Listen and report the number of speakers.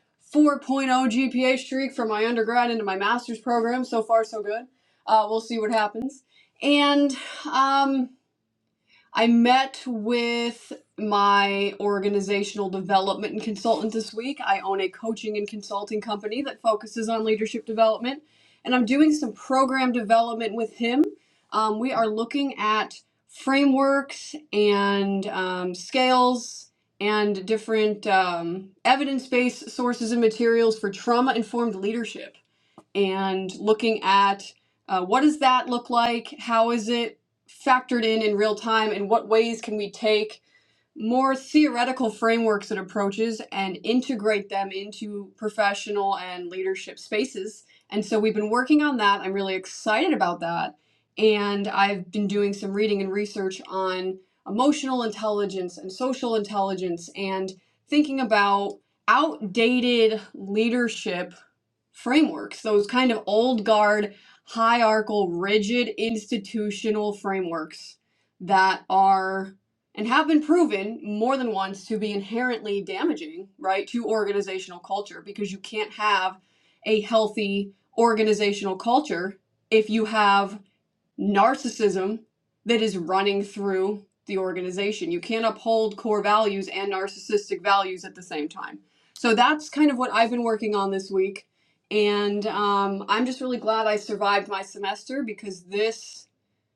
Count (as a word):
one